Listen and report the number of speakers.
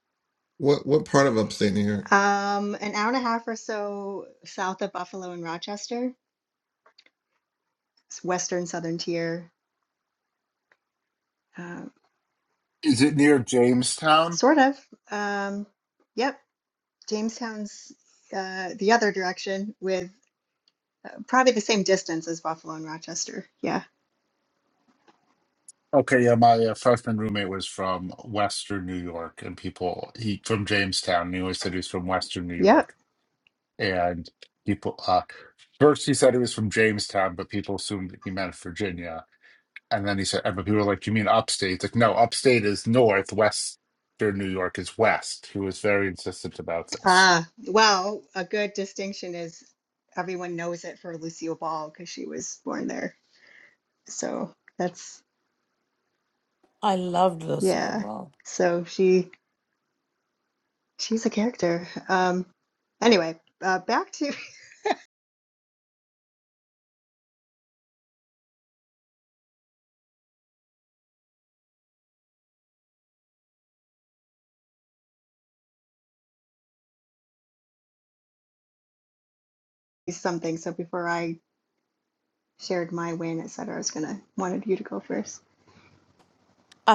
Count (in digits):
4